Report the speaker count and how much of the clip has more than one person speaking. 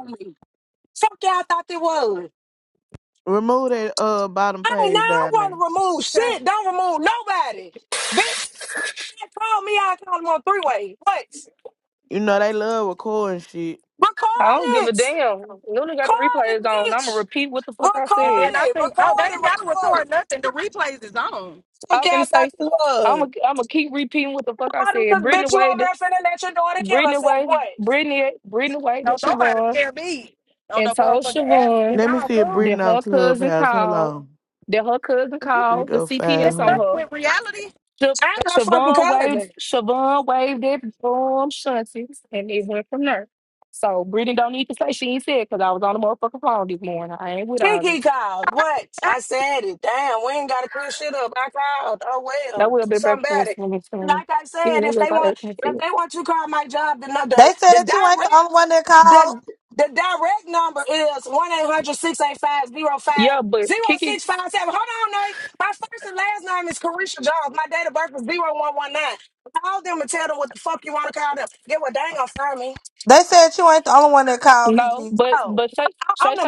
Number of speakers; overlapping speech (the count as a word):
five, about 26%